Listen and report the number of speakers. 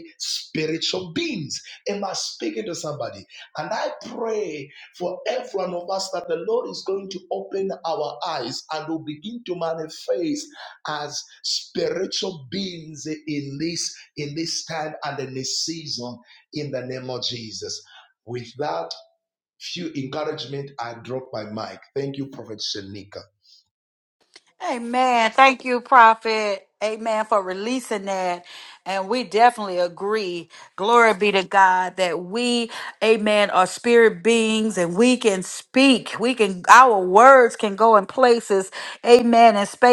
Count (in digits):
2